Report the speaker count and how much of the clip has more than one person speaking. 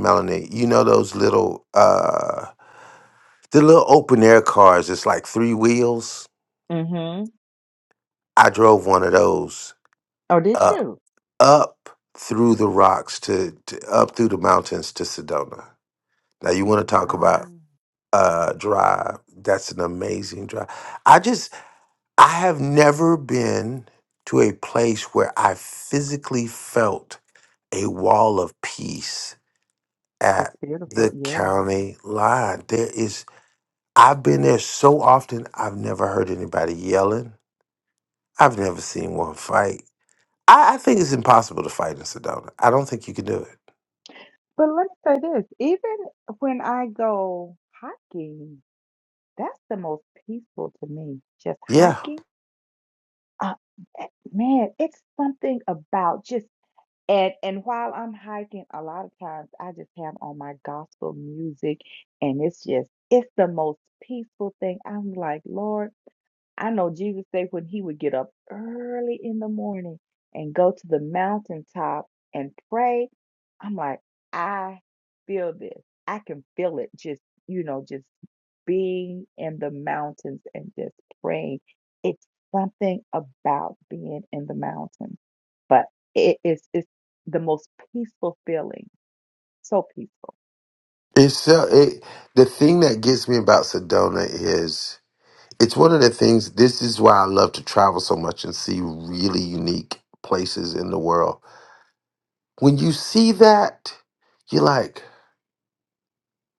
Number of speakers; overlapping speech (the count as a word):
two, about 2%